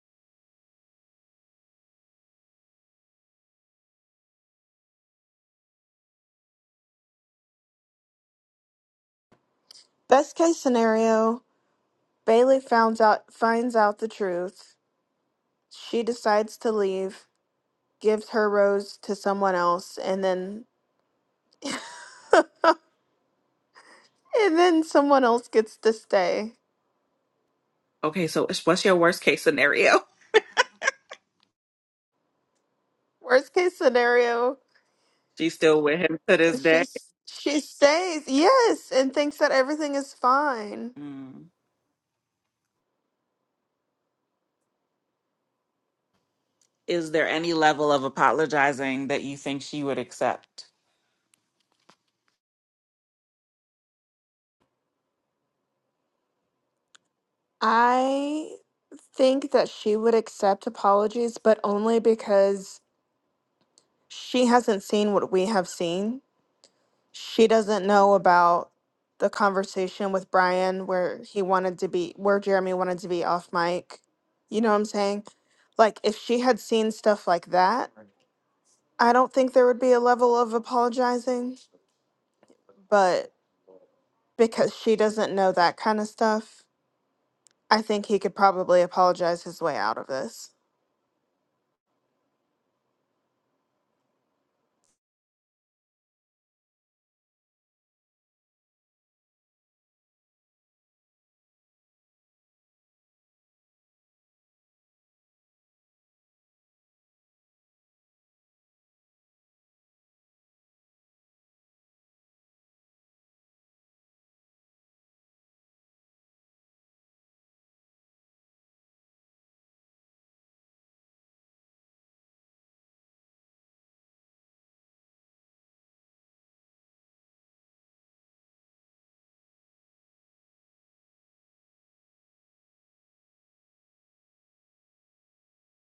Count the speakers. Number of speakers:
two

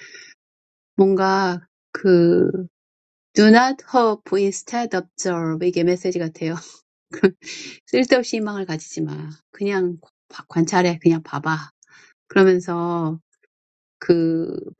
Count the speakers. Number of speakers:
one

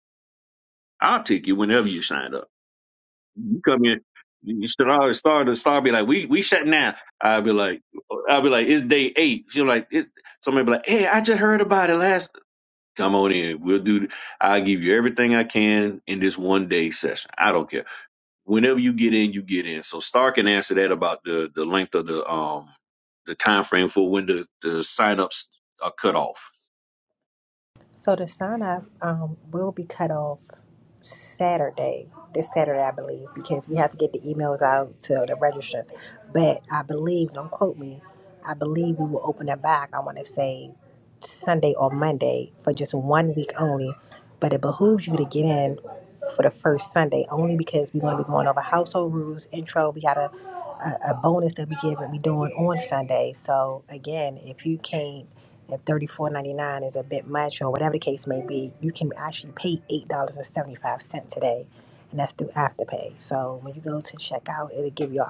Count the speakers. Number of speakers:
two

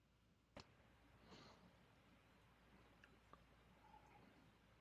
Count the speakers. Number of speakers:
zero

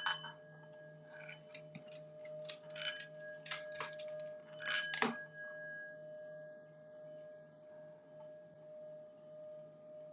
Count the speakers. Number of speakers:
zero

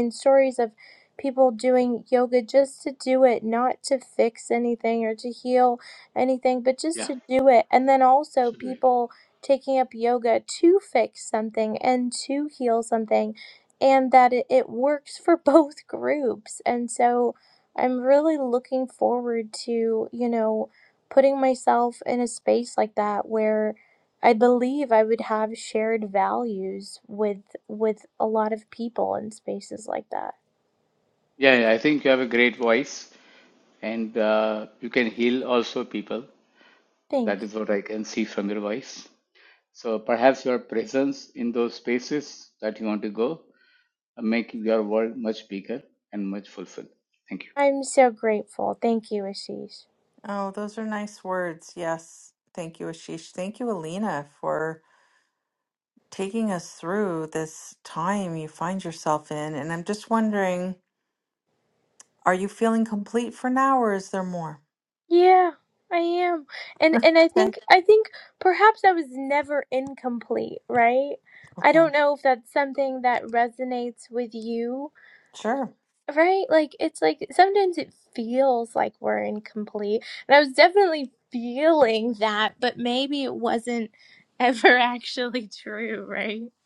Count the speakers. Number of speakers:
three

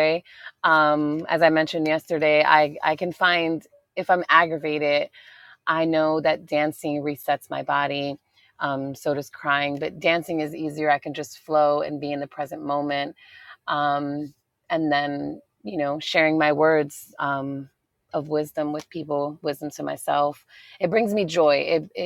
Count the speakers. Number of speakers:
one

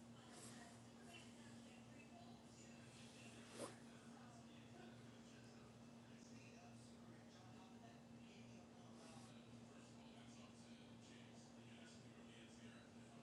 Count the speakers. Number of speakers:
zero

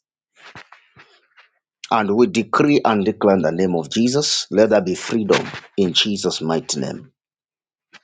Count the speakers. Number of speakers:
one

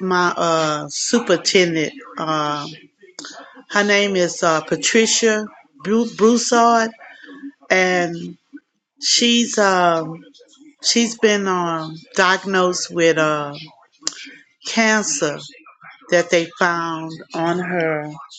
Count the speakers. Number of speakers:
one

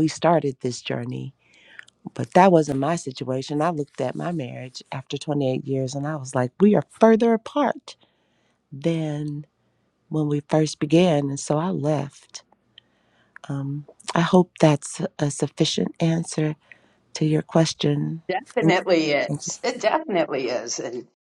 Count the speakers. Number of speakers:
two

